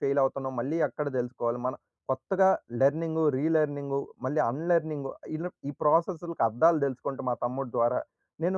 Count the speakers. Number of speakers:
one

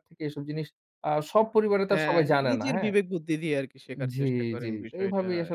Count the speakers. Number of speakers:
two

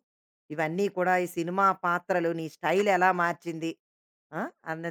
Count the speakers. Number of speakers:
one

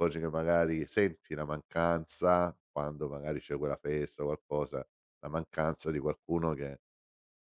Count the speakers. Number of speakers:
one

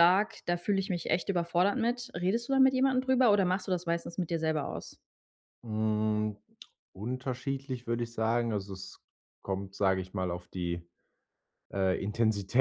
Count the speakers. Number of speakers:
two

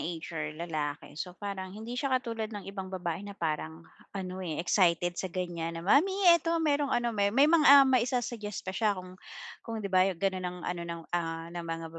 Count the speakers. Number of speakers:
one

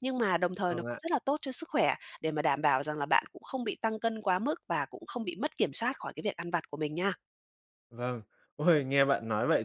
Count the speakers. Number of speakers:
two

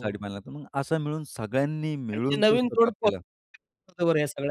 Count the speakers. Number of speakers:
two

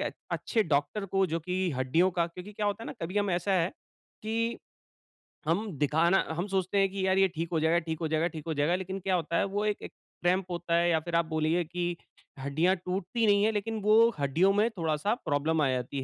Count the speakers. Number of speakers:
one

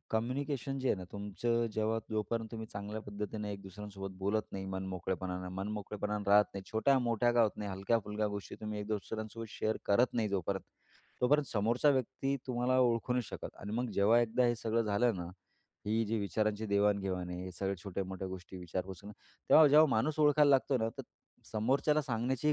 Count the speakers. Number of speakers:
one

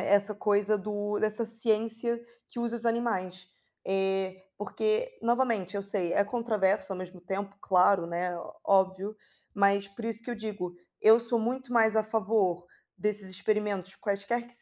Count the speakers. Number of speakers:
one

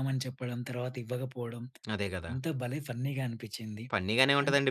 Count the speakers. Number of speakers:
two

